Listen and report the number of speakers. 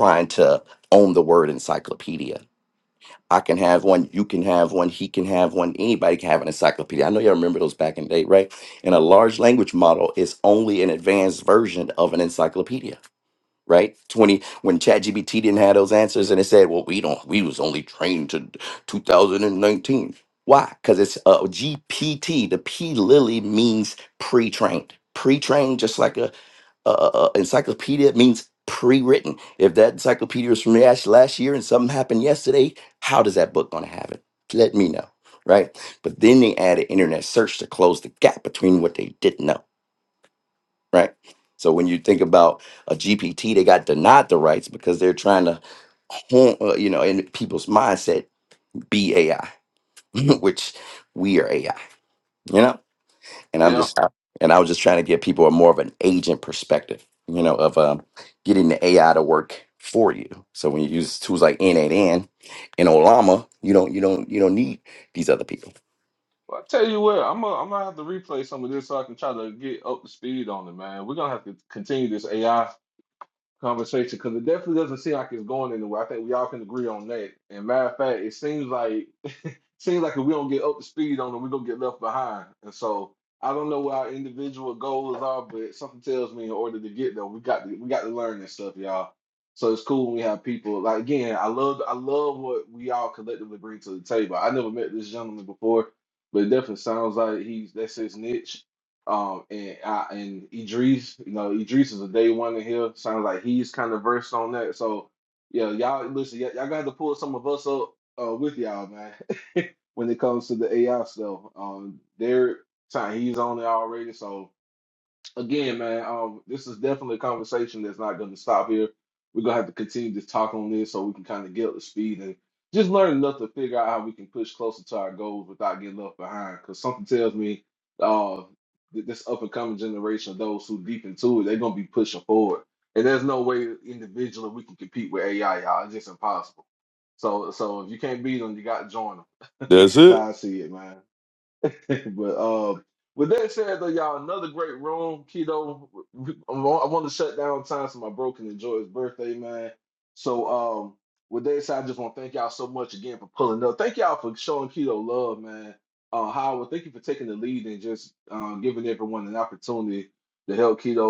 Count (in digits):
2